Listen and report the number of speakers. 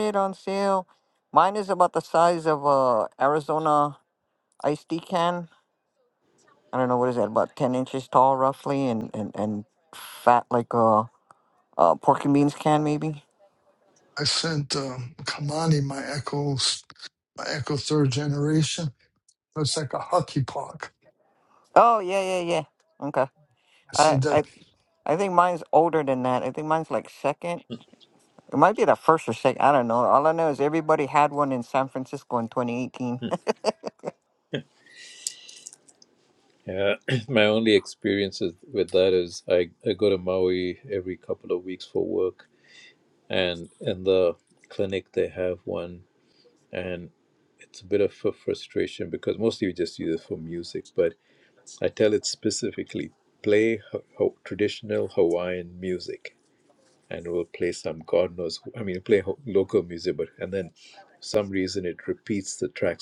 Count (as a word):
three